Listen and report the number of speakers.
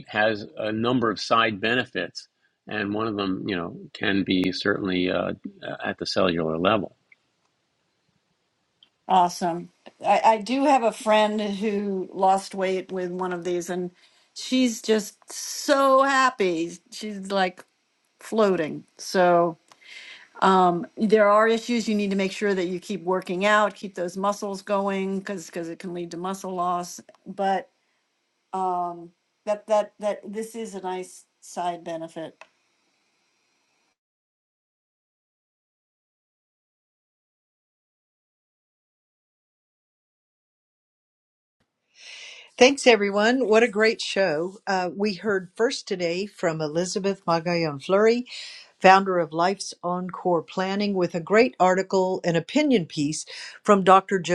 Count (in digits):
3